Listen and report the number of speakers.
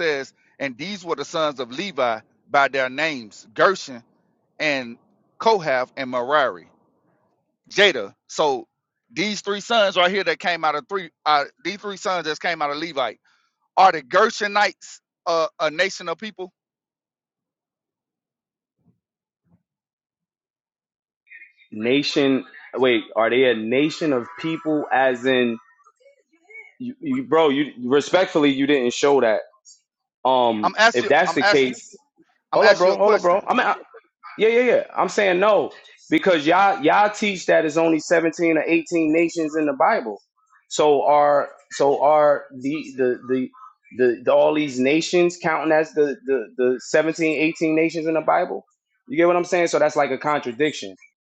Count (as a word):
two